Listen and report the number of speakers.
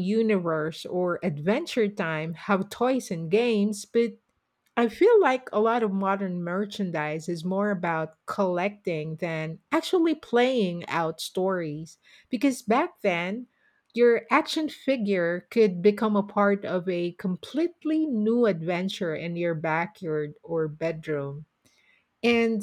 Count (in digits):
1